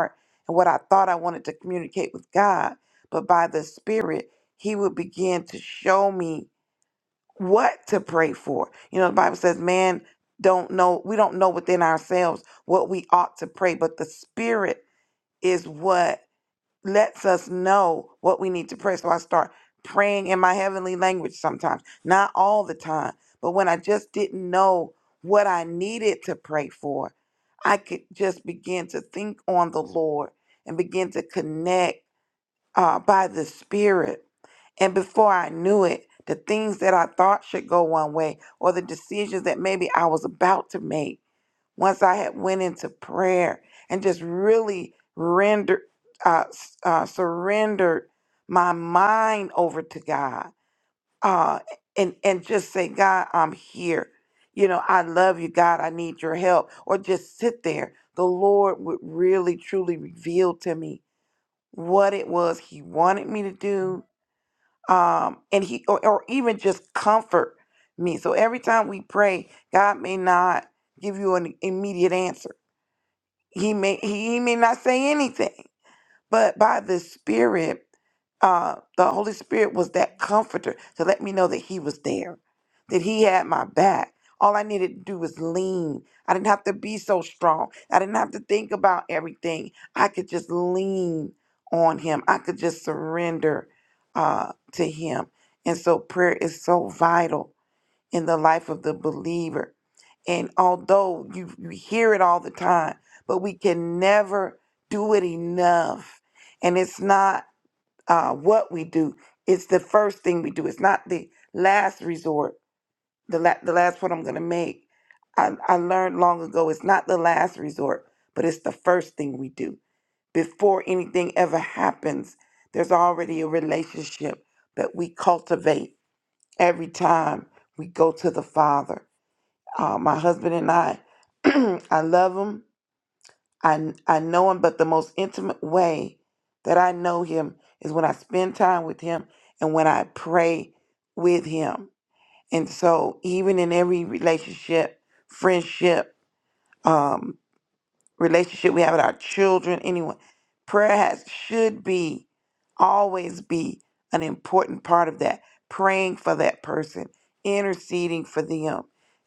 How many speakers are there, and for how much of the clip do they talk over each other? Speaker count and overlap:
1, no overlap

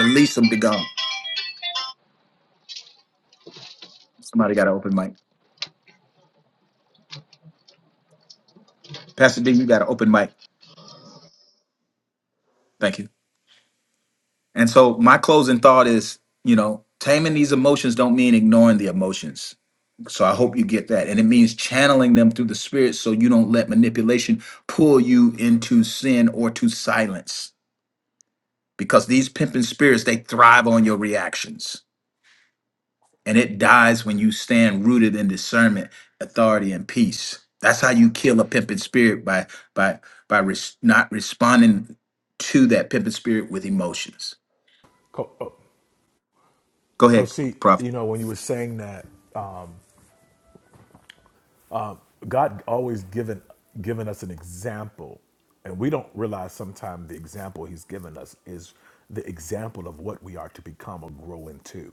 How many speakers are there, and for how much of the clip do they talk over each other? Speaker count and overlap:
2, about 1%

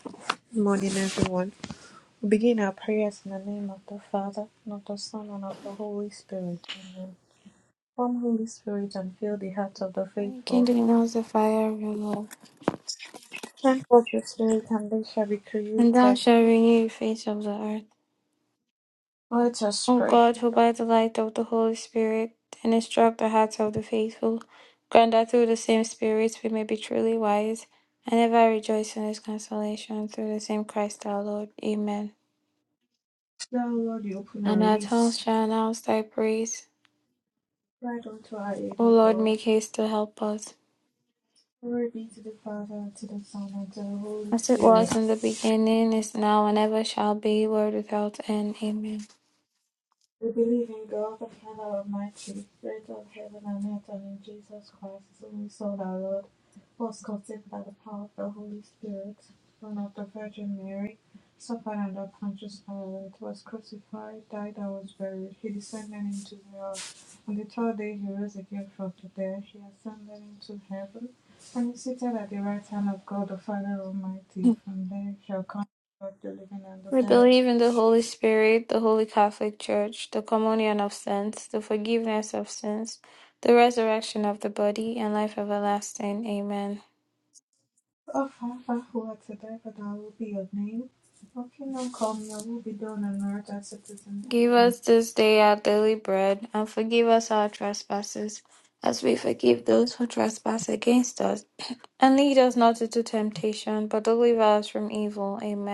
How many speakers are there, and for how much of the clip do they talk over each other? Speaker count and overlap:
2, about 4%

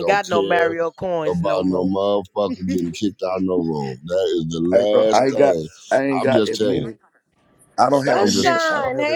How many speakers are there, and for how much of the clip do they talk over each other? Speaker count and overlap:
3, about 44%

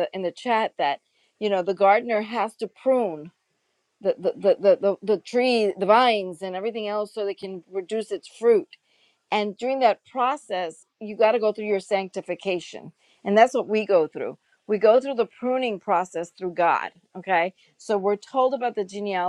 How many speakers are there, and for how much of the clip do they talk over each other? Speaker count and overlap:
1, no overlap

